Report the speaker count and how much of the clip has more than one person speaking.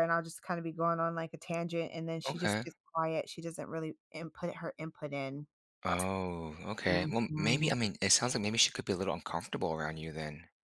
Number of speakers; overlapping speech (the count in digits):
2, about 8%